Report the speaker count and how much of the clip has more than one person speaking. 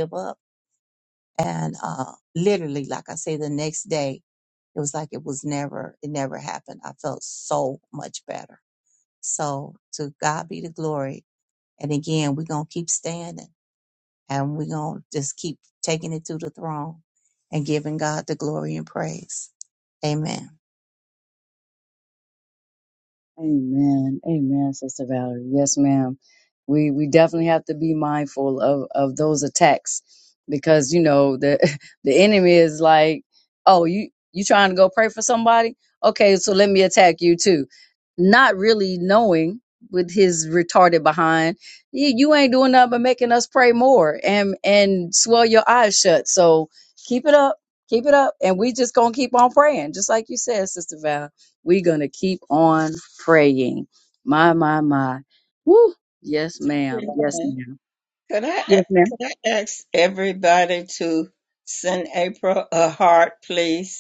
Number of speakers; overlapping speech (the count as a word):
three, about 1%